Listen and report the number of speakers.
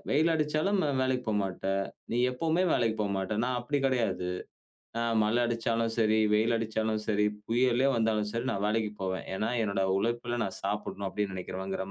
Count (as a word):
one